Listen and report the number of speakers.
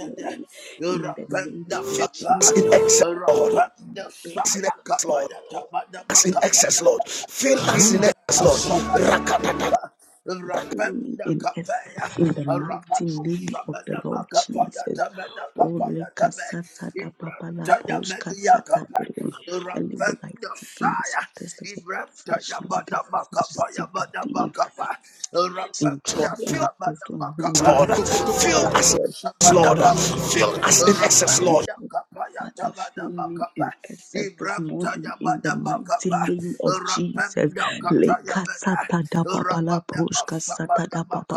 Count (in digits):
3